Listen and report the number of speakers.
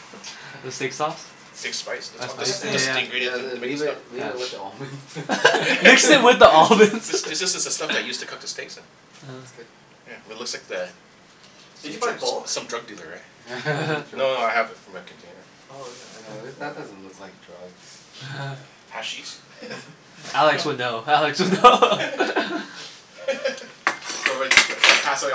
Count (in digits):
4